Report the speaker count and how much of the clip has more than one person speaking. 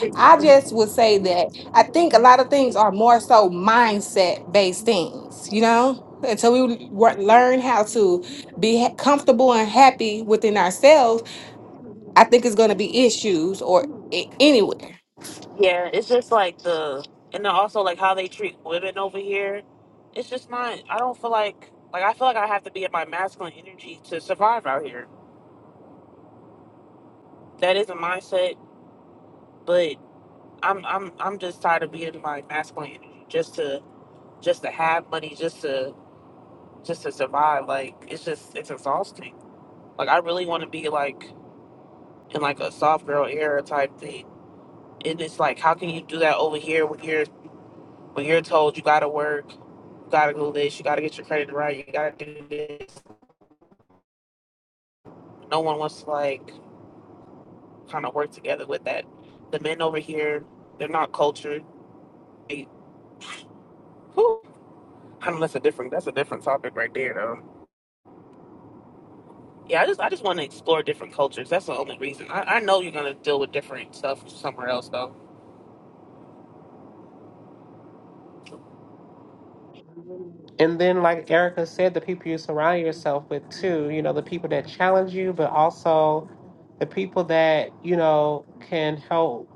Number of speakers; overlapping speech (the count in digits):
3, no overlap